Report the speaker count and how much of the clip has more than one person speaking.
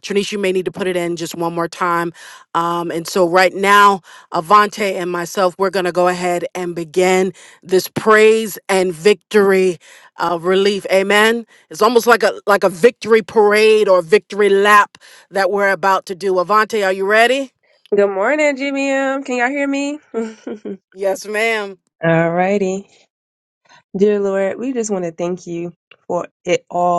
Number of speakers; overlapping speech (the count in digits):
2, no overlap